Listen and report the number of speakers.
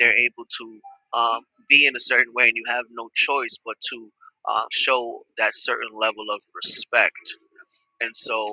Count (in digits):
1